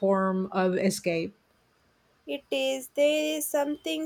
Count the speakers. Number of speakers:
two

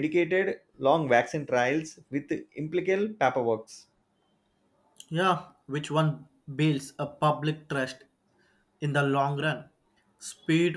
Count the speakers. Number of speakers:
two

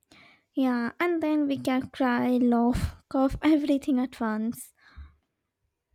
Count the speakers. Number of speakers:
one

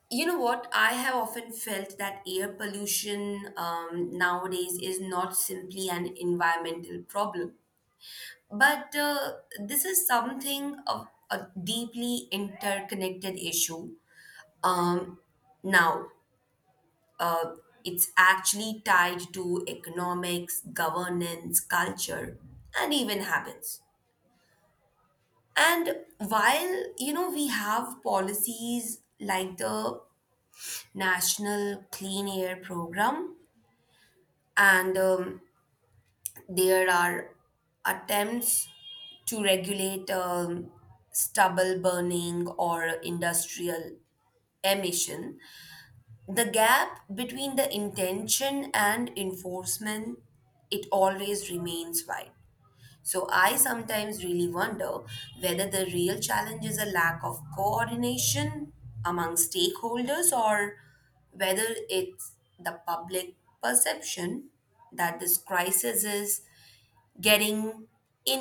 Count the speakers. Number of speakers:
one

